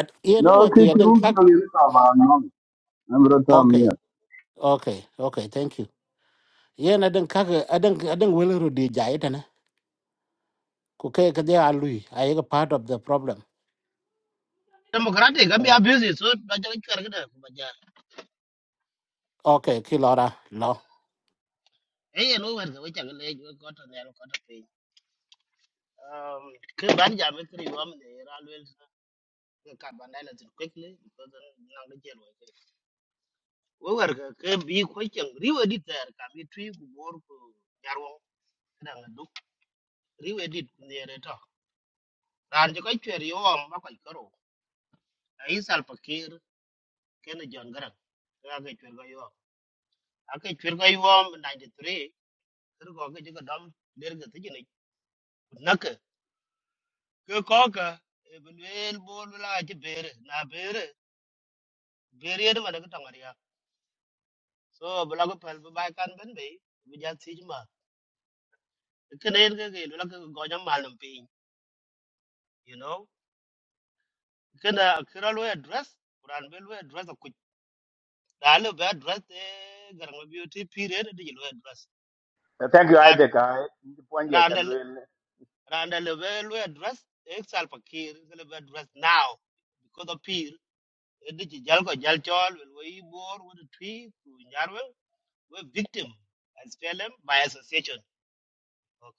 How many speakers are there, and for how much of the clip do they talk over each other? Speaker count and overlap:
four, about 2%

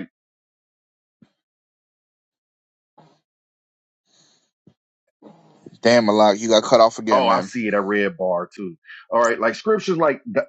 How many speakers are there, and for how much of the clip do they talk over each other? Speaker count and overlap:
two, about 3%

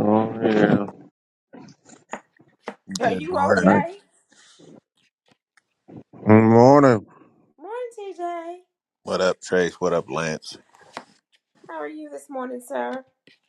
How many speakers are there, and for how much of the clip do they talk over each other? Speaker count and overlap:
three, about 5%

